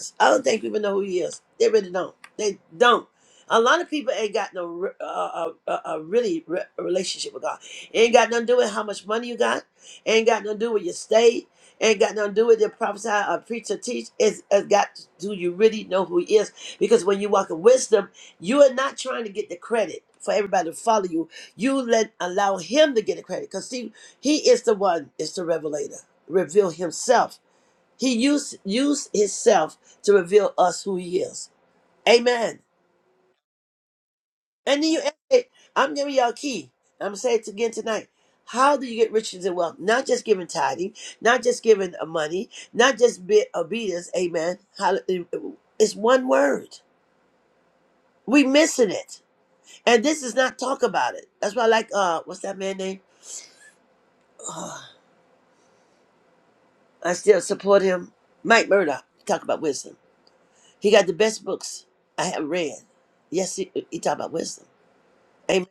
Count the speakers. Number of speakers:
one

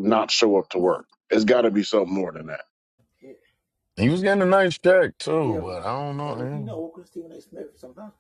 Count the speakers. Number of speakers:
three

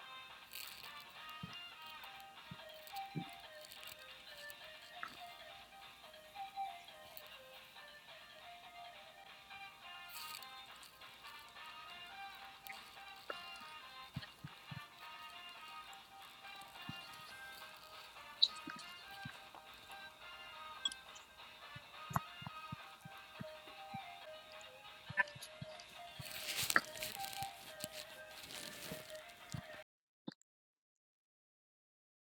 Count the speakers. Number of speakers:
zero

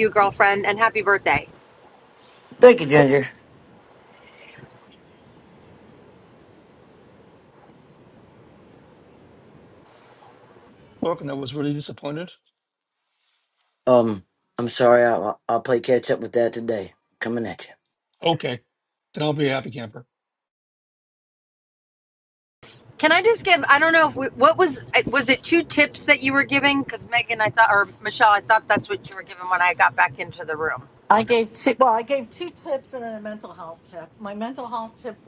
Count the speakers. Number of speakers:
four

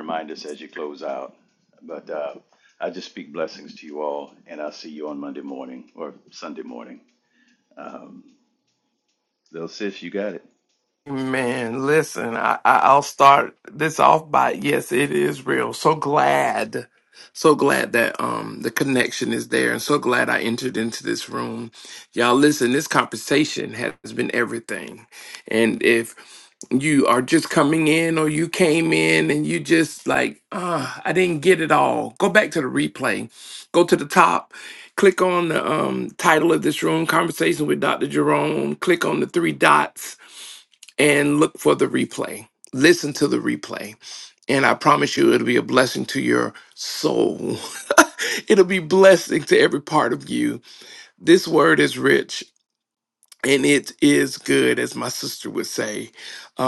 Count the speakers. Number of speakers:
two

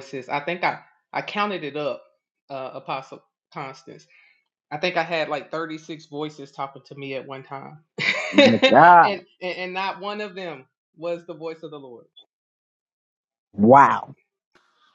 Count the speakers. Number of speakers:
two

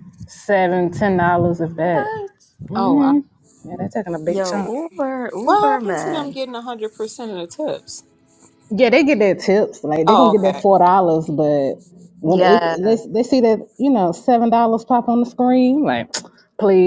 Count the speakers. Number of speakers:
three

